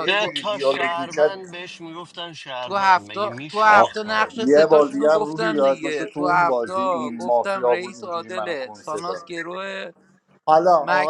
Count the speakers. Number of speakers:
3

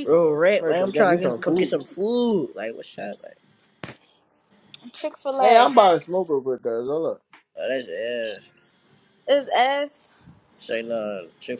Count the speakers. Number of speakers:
3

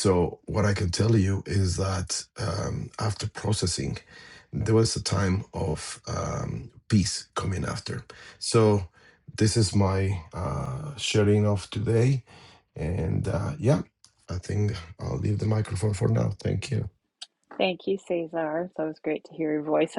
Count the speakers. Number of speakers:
2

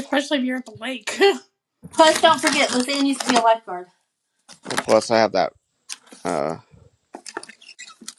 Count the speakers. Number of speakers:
3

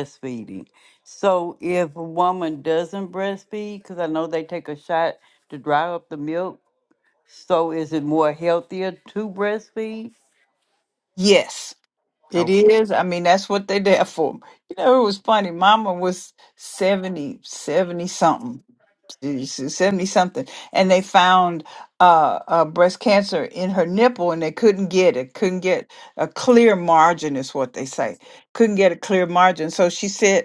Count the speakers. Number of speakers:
2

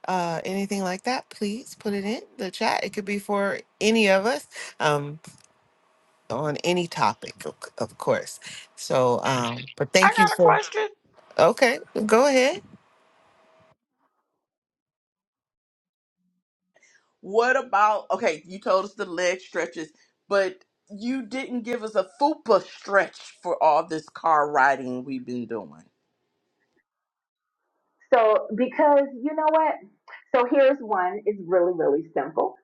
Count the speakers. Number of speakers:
3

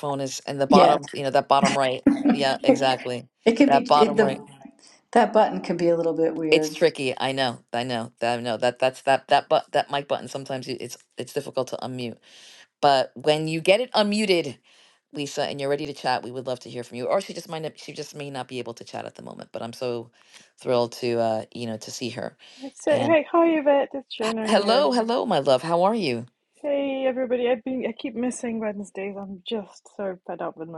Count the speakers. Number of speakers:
3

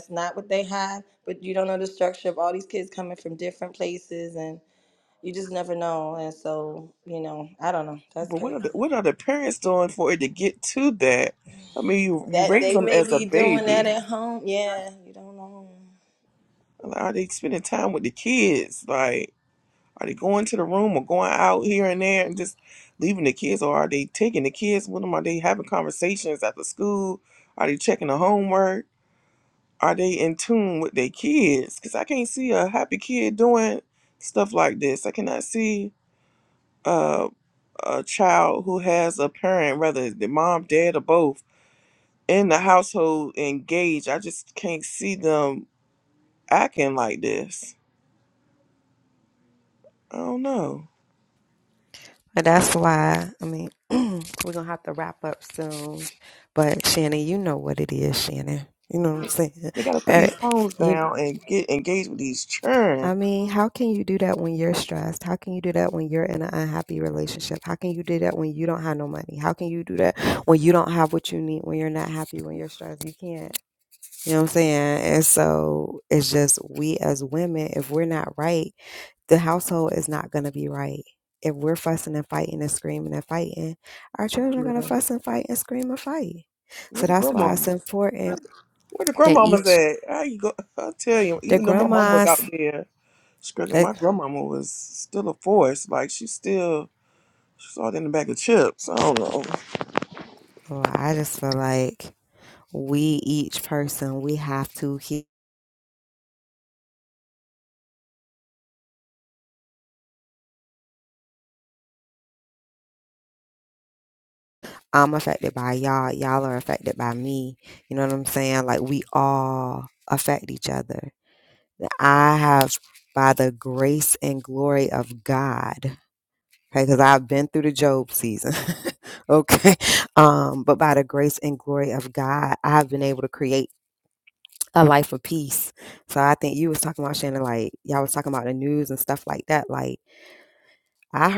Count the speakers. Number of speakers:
3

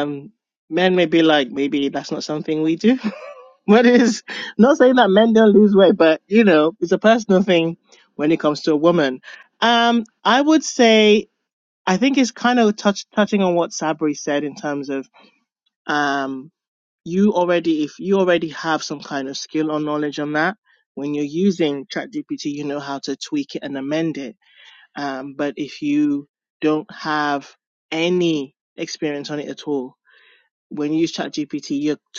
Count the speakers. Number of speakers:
1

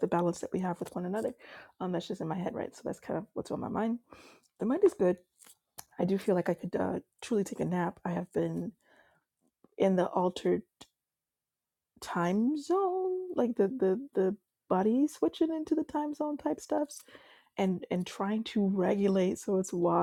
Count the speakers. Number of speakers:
1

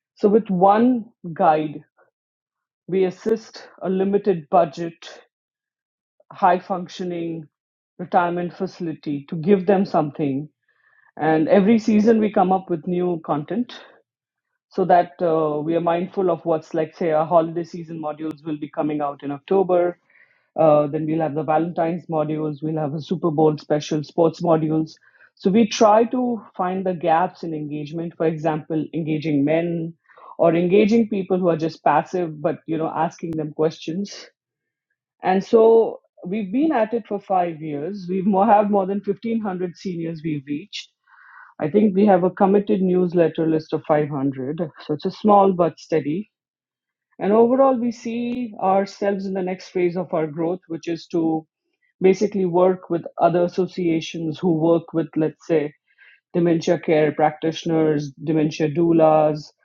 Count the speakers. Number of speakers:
1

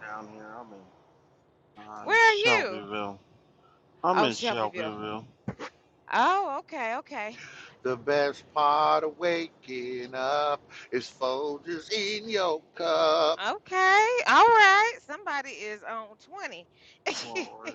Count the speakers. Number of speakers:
3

